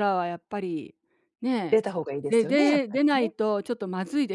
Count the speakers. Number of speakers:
two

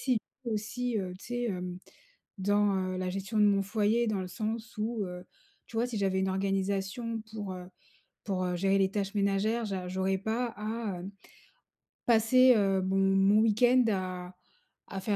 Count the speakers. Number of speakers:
one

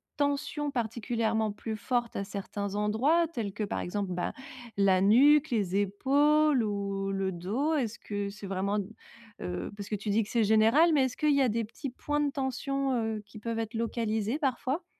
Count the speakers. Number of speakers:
one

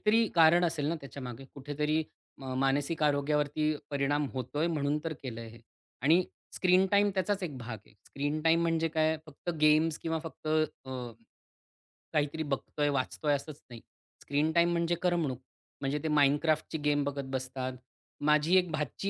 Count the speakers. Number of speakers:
one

